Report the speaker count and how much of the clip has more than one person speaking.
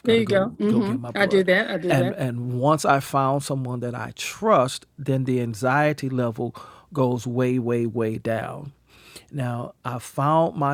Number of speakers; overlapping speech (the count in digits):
2, about 15%